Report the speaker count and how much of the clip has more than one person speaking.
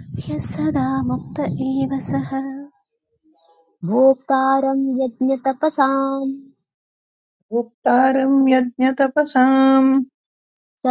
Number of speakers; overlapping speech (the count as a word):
three, no overlap